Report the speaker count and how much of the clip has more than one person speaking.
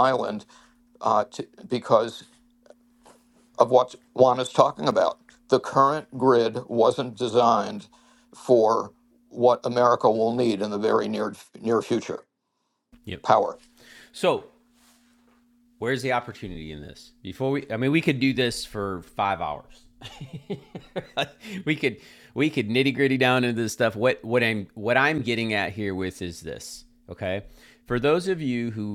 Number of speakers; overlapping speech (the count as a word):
two, no overlap